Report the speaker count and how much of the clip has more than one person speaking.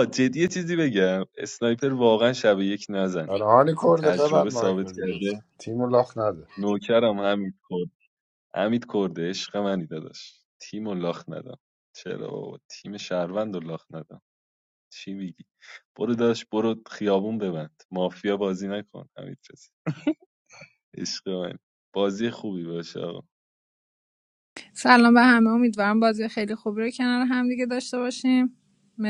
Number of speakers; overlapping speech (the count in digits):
3, about 5%